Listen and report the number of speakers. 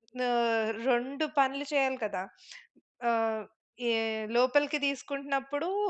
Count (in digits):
1